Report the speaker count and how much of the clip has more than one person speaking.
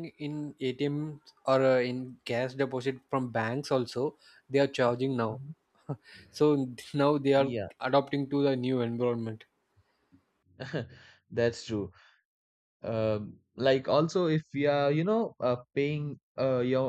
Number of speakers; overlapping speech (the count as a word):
two, about 2%